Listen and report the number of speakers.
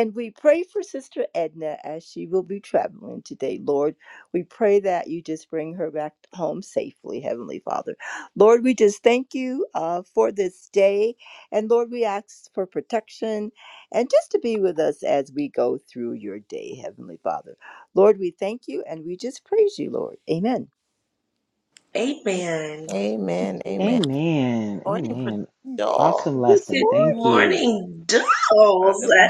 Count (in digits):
4